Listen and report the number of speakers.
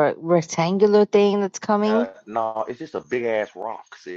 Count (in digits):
2